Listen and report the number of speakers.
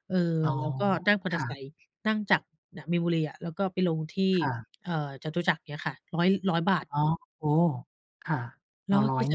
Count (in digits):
2